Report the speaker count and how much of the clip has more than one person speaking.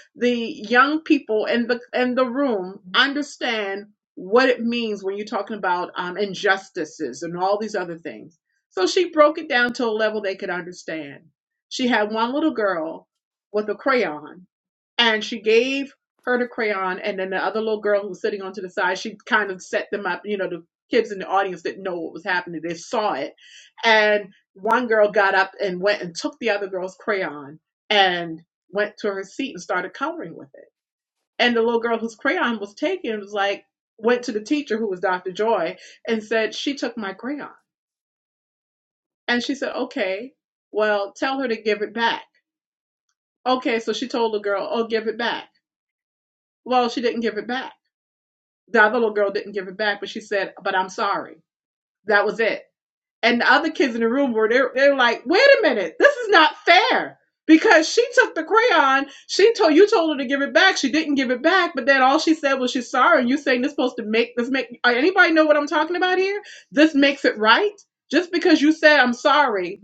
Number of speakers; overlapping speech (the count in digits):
1, no overlap